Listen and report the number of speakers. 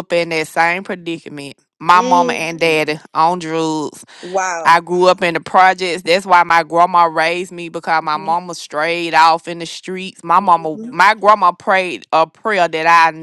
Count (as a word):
two